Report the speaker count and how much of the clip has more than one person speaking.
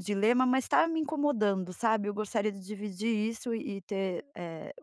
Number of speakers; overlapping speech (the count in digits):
1, no overlap